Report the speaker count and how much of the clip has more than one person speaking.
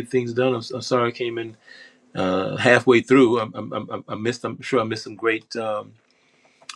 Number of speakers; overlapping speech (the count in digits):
1, no overlap